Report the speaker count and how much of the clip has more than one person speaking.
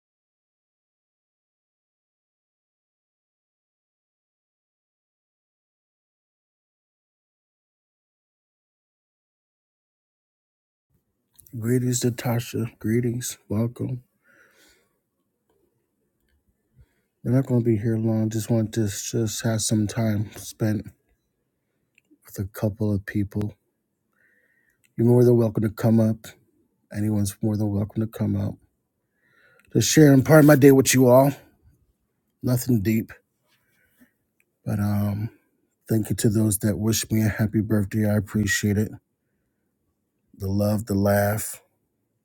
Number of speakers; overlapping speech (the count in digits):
1, no overlap